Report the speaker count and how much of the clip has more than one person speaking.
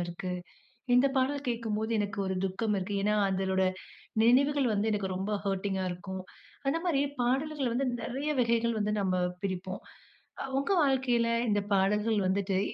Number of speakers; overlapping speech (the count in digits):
1, no overlap